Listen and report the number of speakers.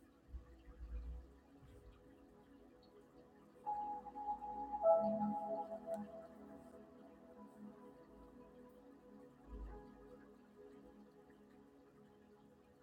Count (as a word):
zero